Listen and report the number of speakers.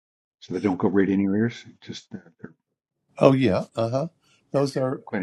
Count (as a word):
two